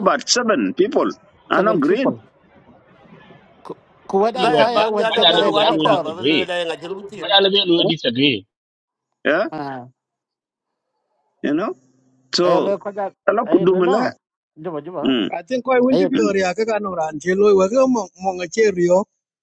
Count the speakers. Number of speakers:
5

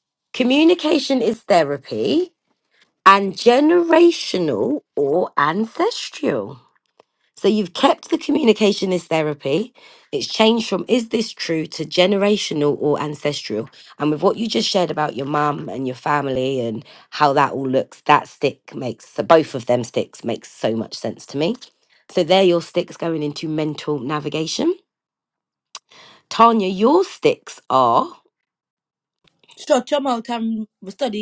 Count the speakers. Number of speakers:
2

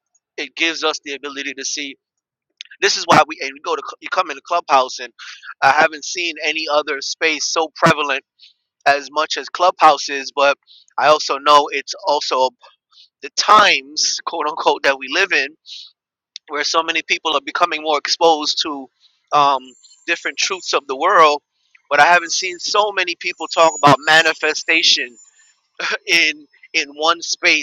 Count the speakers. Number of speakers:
1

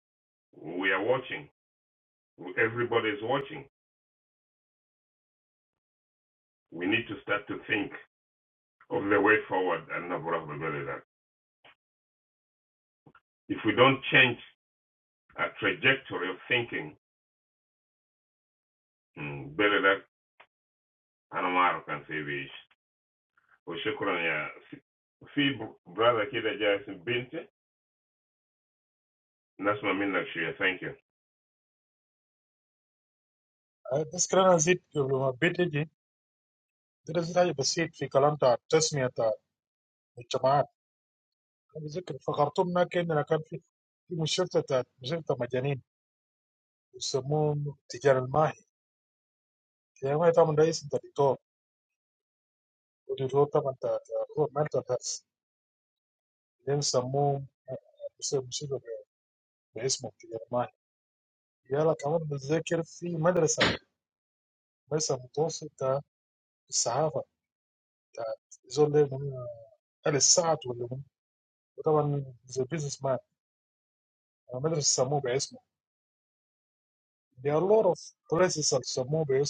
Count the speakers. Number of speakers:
2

